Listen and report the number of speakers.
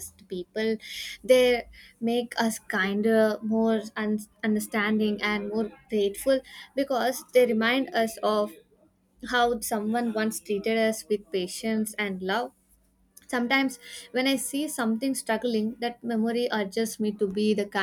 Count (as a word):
one